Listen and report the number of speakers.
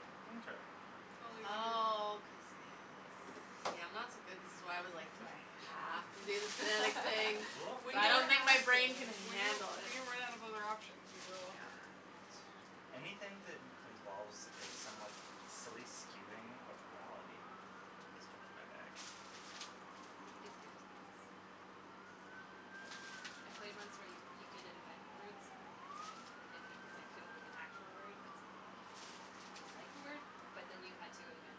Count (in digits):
4